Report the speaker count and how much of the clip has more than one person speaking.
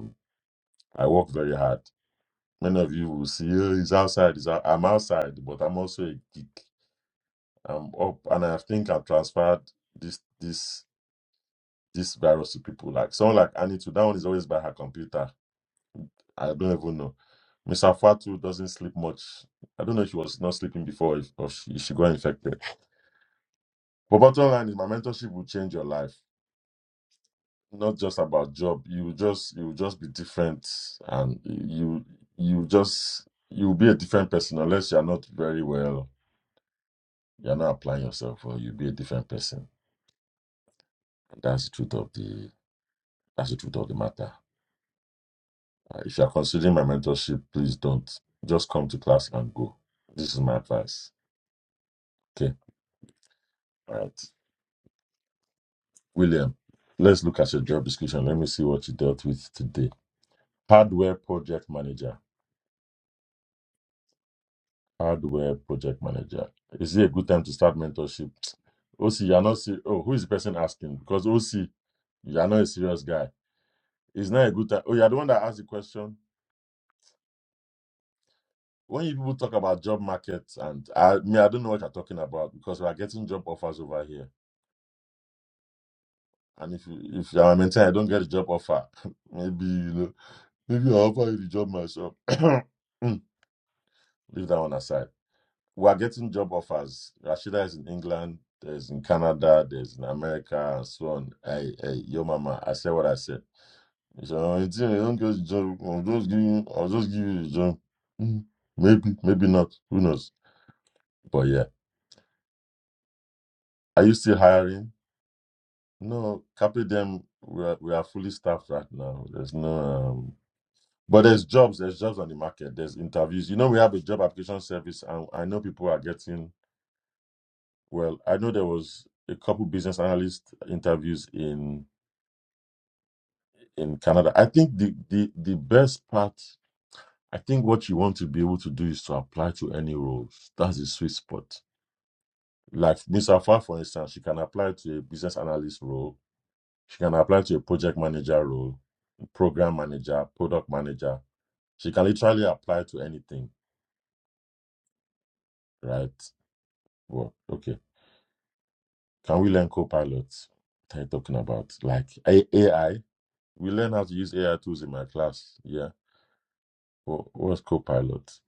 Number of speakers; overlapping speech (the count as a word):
one, no overlap